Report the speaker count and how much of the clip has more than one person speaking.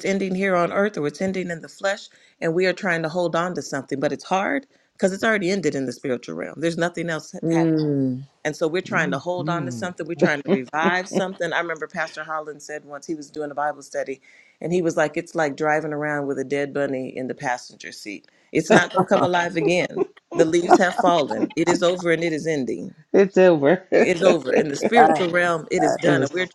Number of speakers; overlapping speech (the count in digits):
3, about 9%